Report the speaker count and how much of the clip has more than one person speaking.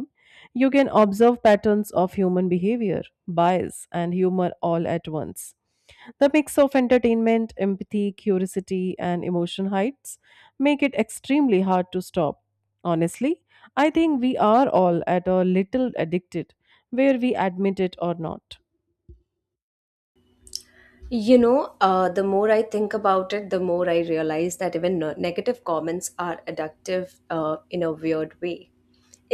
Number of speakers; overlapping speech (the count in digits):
2, no overlap